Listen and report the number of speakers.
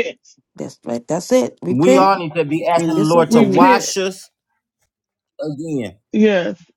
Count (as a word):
three